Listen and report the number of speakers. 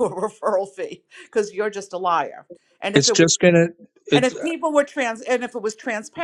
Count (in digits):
2